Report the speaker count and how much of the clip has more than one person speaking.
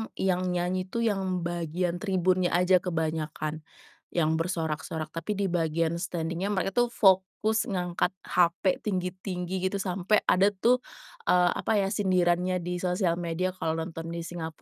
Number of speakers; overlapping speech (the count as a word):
one, no overlap